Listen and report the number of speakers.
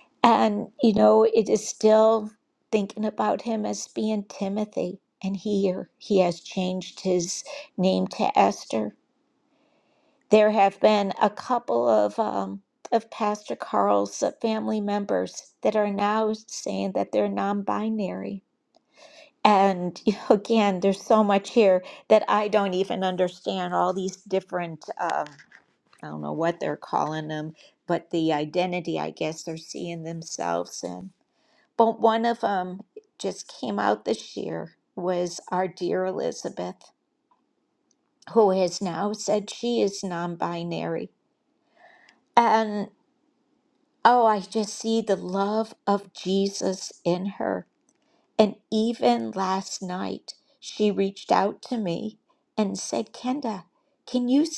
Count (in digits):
1